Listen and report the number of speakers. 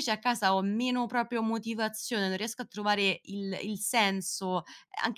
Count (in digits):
1